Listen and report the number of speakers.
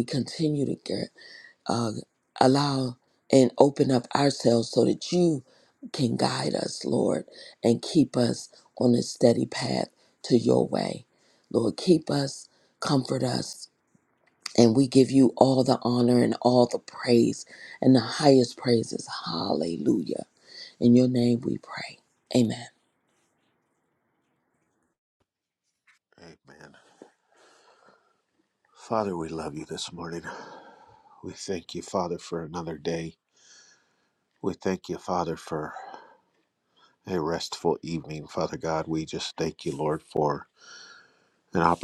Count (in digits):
2